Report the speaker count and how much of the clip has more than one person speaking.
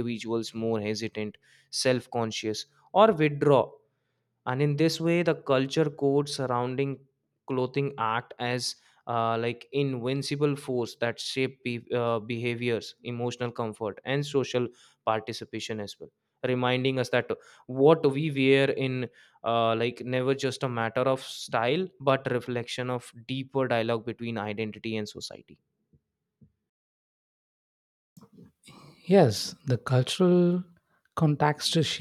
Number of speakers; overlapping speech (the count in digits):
2, no overlap